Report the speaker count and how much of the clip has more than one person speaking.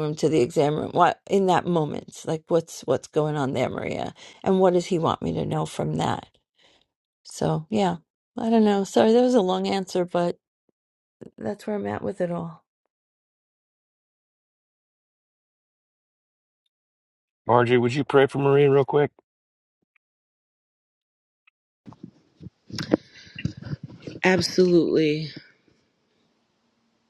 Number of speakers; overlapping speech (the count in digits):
3, no overlap